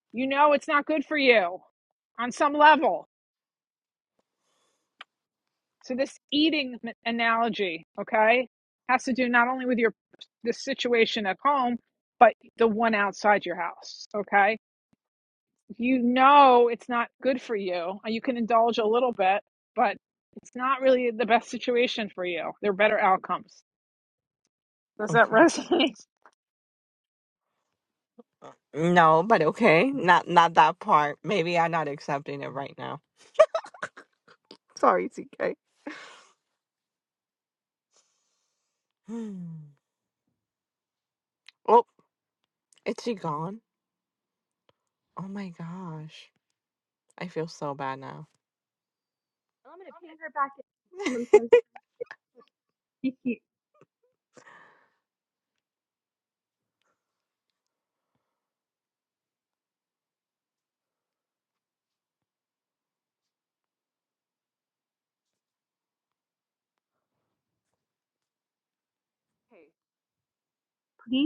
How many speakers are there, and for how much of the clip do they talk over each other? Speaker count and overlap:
three, under 1%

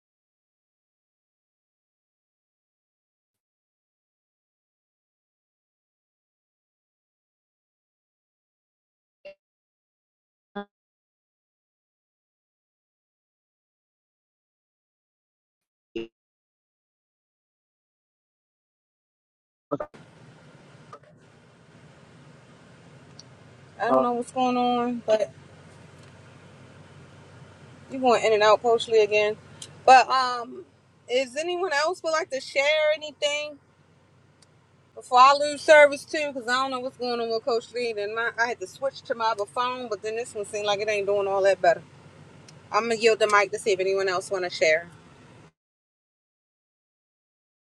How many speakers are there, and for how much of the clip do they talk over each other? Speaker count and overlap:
one, no overlap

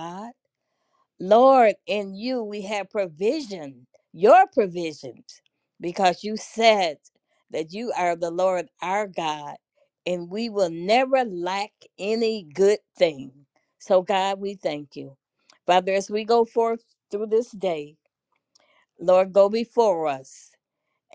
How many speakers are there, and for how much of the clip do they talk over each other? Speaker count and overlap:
one, no overlap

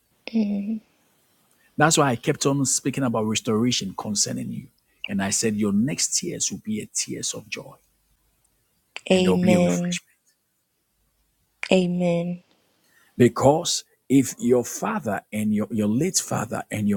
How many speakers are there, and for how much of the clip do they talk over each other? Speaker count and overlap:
two, about 5%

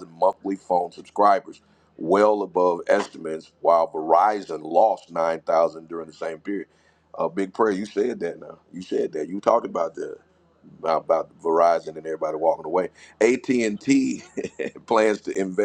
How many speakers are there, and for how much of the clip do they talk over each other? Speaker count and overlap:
one, no overlap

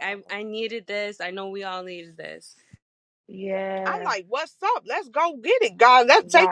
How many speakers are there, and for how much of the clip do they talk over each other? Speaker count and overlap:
three, about 9%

